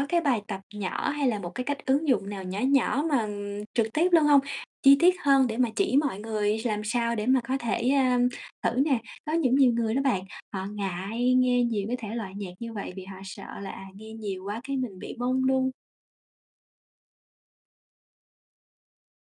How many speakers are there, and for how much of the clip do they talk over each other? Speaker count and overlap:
1, no overlap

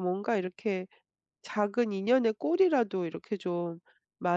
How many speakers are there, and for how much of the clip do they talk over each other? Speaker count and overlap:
1, no overlap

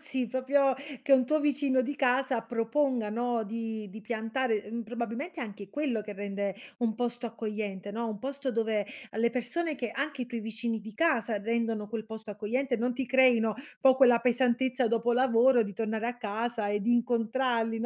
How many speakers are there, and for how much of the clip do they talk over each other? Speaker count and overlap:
1, no overlap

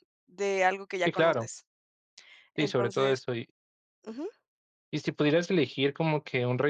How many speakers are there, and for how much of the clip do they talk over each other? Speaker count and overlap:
2, about 14%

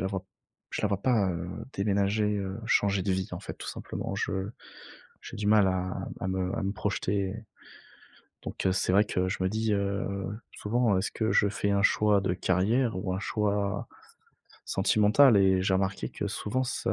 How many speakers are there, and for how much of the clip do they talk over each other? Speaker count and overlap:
1, no overlap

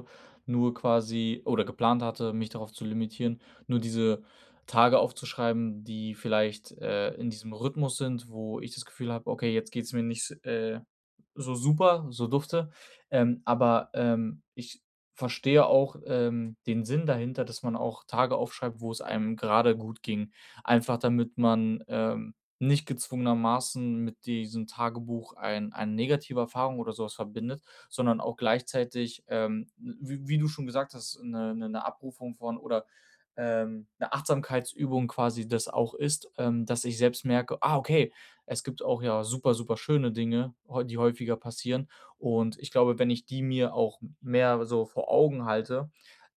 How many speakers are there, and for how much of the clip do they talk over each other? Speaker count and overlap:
1, no overlap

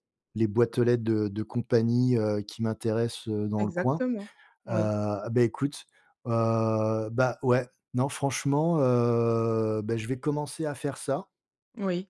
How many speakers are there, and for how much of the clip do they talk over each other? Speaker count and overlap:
2, about 5%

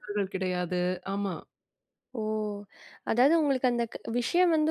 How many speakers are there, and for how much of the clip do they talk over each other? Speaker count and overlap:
2, no overlap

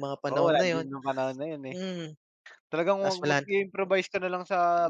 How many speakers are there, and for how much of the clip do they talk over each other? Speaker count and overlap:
2, about 22%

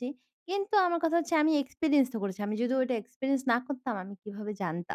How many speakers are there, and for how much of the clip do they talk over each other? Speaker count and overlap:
1, no overlap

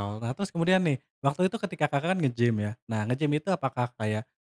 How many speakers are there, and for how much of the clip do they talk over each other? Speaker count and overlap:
1, no overlap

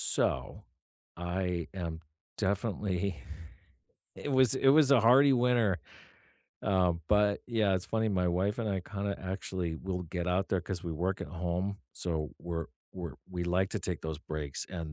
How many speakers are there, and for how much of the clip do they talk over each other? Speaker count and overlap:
1, no overlap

